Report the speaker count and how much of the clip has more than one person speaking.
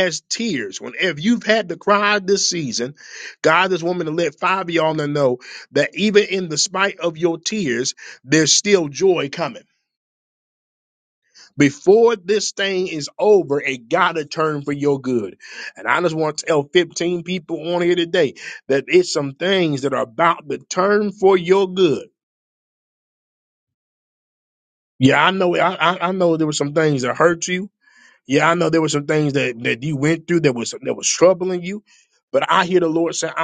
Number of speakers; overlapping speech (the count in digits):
1, no overlap